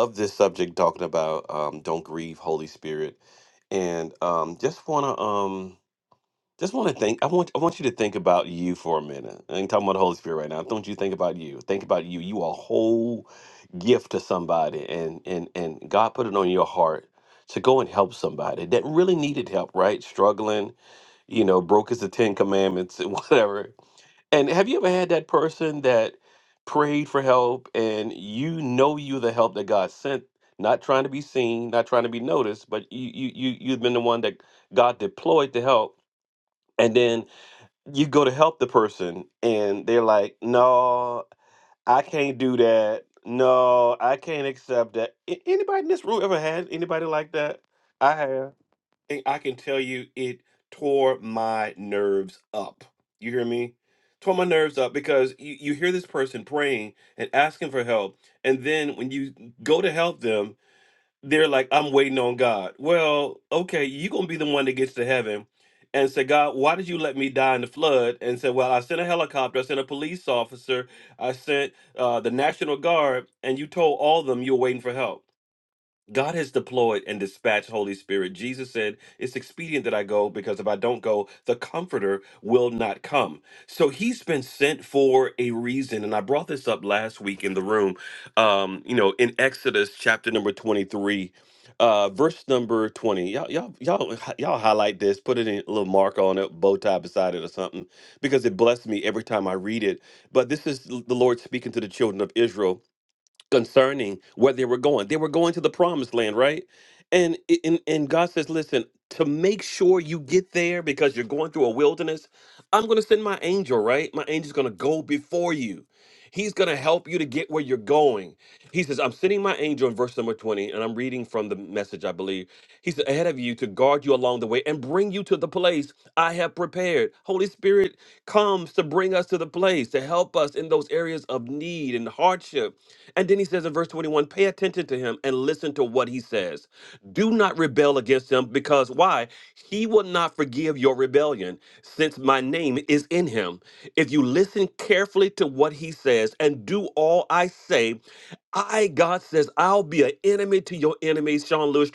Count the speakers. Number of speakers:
1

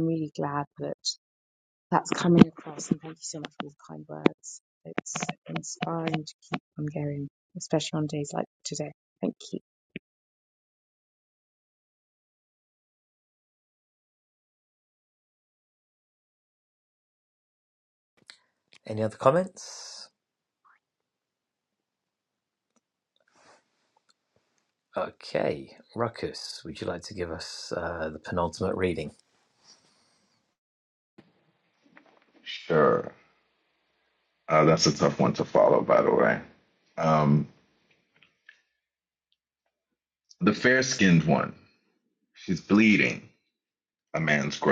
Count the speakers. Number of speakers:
3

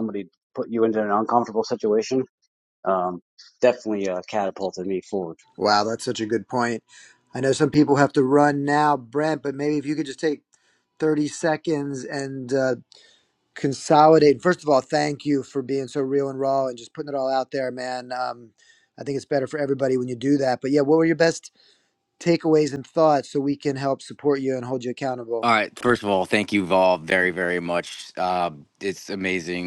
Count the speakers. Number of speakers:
3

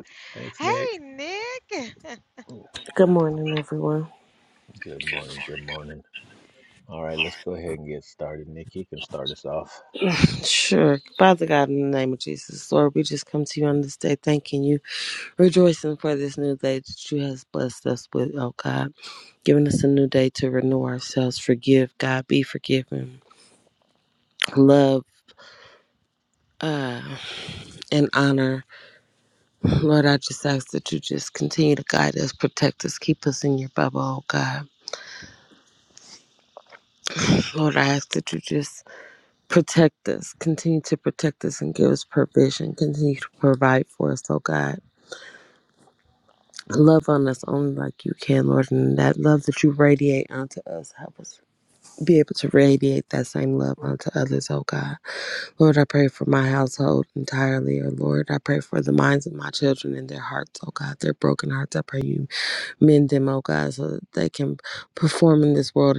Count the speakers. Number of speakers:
3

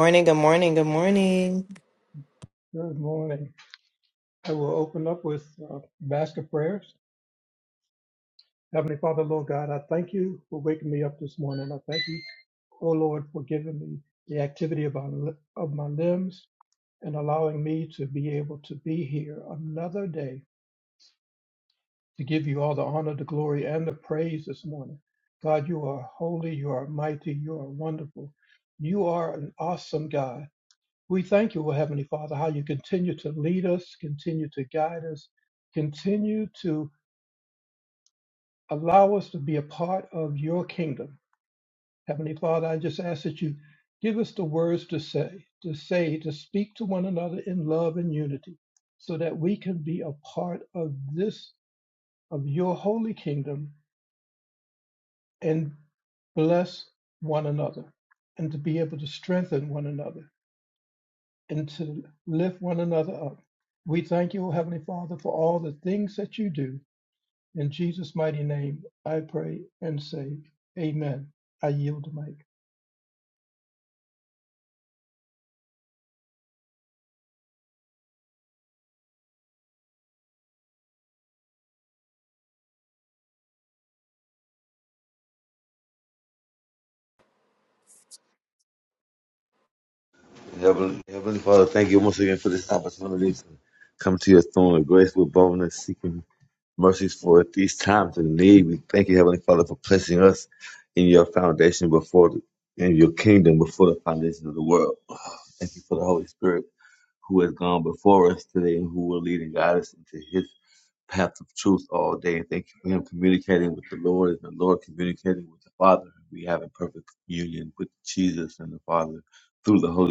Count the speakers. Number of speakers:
3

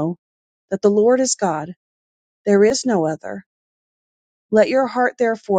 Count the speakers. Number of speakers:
1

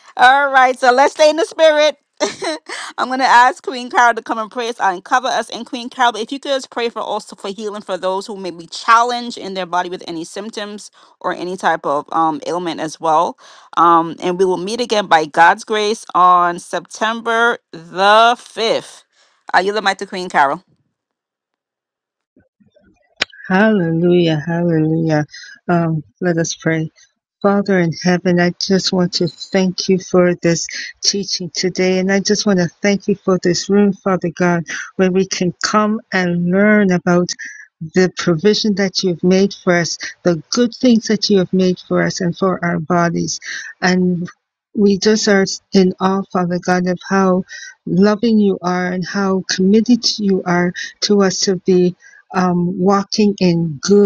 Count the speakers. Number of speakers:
2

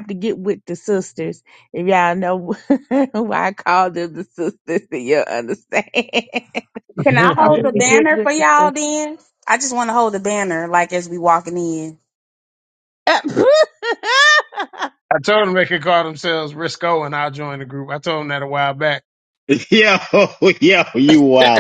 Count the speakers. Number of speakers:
4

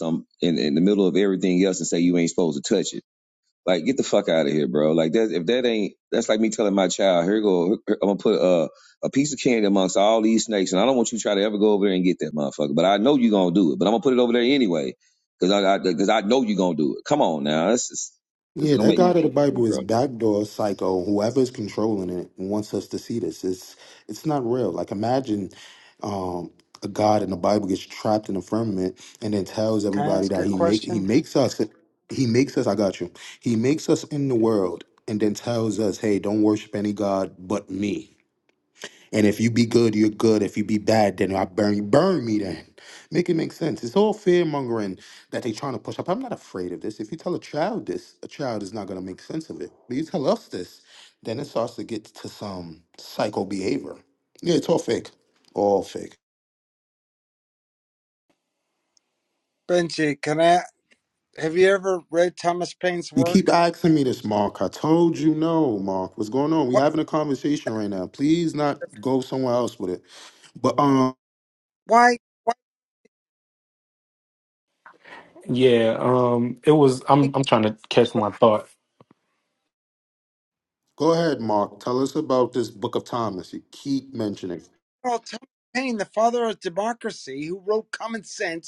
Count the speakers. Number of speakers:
4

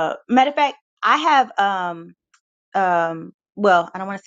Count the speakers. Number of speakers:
1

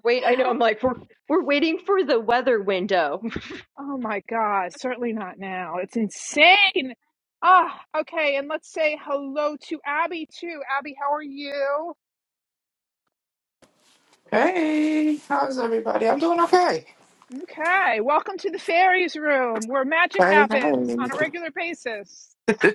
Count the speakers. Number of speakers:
3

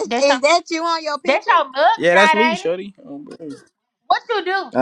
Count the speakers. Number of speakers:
3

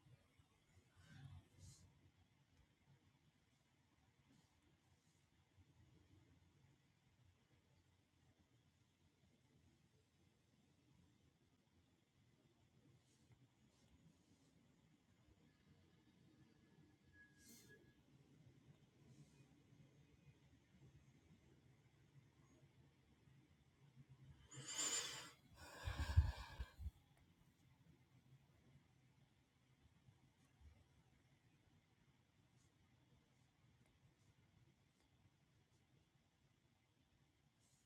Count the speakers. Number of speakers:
0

